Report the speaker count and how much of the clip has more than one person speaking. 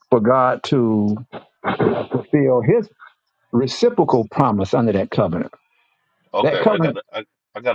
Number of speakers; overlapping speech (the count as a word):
two, about 7%